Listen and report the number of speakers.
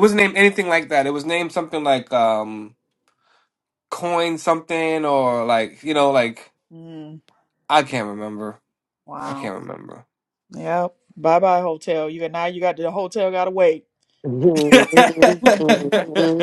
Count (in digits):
3